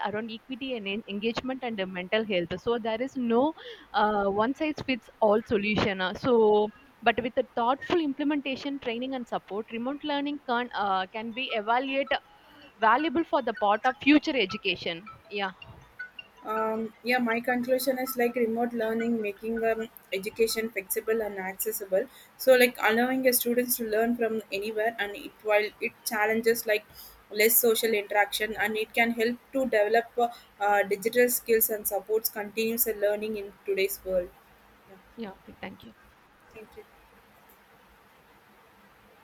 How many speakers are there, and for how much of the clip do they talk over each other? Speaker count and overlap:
two, no overlap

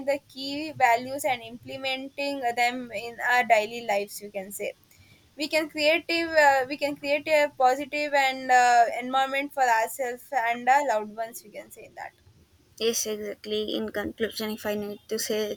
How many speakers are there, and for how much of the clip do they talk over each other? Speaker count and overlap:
two, no overlap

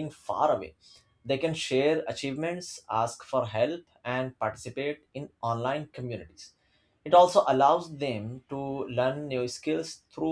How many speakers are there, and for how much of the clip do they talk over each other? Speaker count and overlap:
one, no overlap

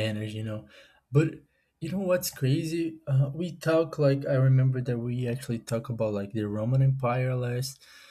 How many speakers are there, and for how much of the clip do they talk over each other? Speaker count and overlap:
one, no overlap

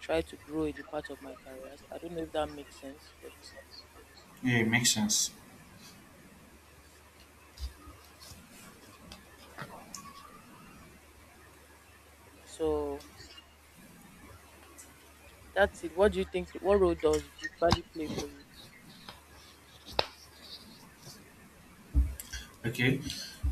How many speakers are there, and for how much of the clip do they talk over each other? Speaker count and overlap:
two, no overlap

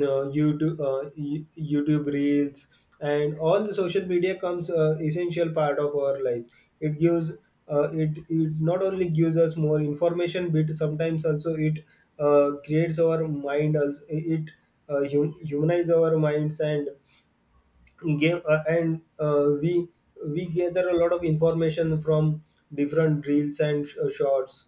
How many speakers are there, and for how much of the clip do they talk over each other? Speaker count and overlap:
one, no overlap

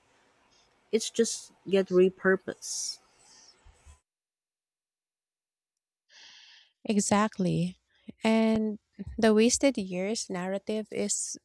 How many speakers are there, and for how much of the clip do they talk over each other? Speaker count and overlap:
two, no overlap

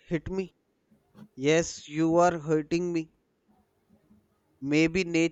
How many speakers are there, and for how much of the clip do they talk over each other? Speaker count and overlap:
one, no overlap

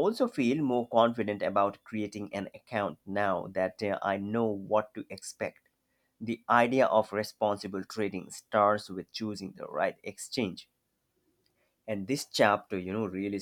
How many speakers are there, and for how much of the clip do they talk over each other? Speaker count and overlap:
one, no overlap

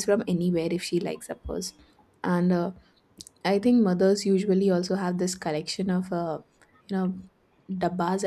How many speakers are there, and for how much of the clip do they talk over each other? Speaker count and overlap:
one, no overlap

